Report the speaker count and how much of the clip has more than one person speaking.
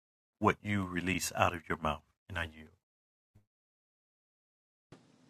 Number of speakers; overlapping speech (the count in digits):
1, no overlap